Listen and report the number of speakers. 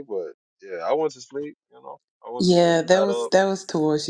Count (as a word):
two